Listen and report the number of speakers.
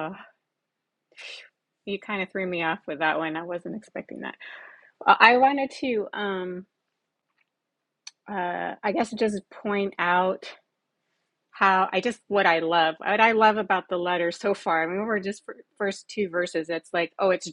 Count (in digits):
1